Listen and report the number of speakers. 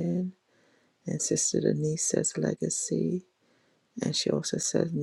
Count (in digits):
1